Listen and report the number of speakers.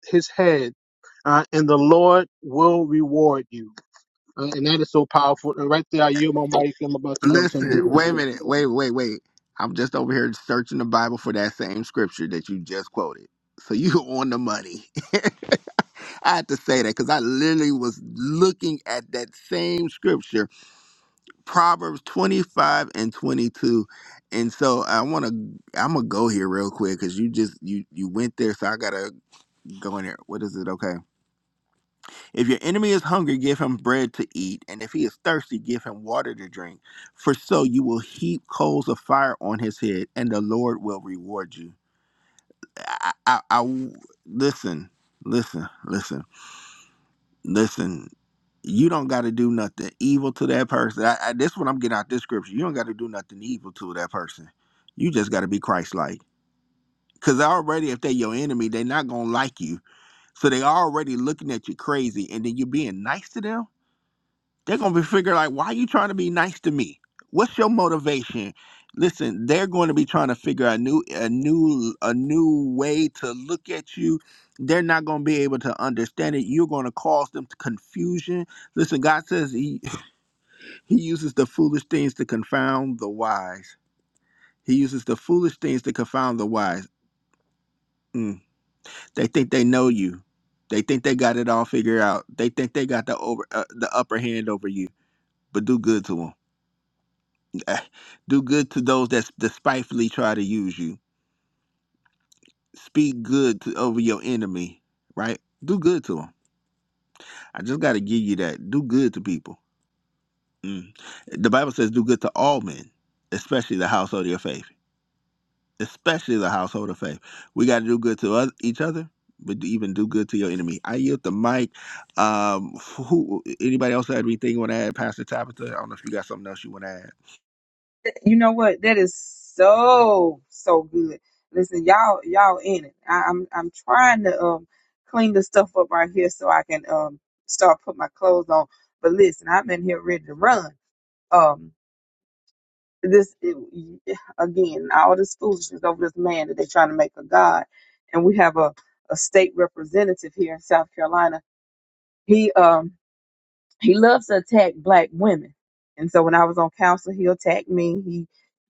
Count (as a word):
three